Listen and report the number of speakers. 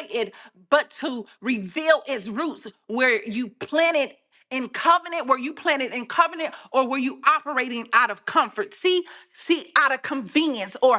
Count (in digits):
1